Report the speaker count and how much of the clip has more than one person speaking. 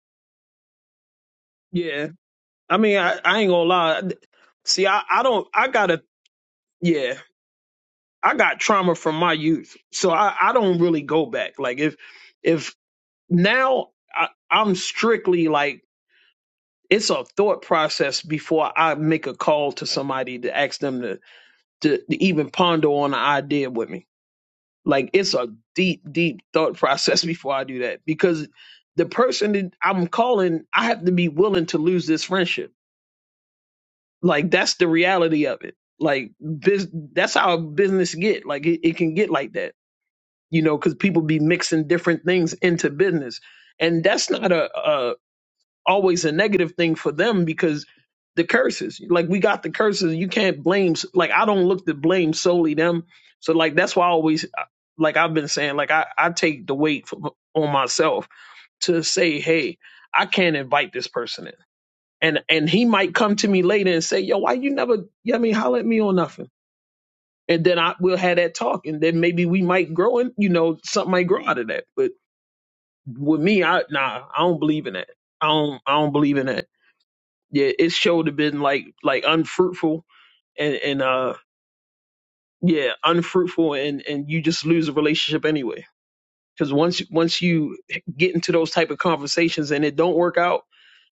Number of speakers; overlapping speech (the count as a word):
one, no overlap